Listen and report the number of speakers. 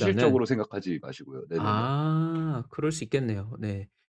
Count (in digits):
2